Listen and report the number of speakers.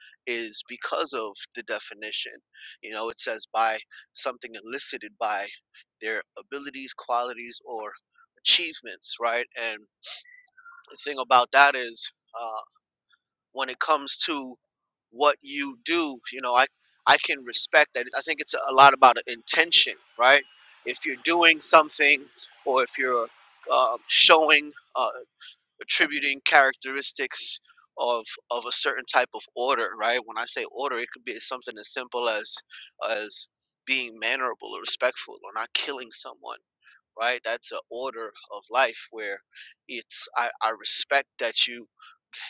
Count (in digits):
1